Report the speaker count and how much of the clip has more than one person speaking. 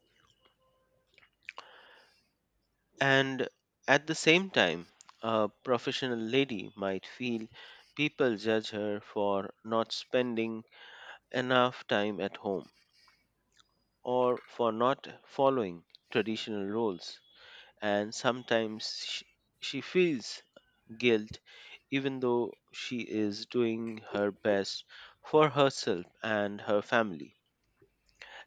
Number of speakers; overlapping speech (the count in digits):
1, no overlap